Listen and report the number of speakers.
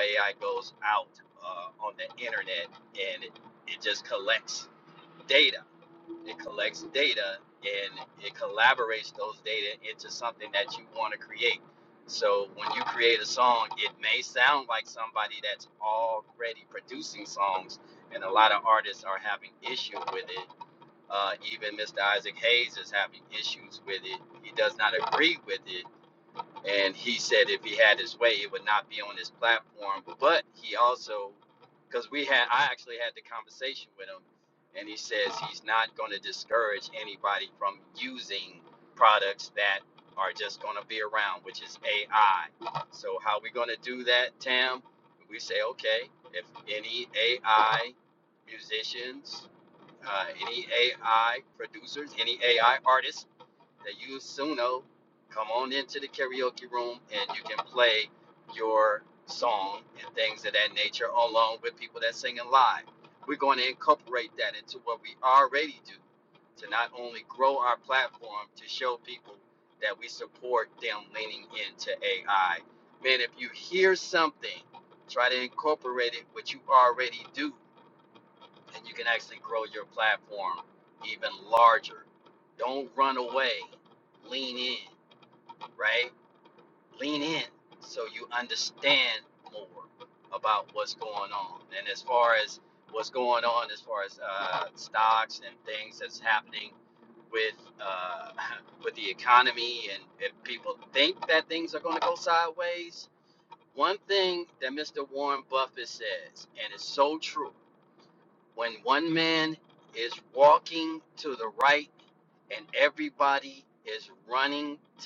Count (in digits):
1